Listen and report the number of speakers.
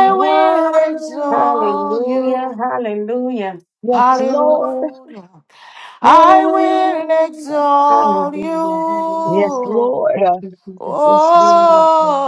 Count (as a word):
three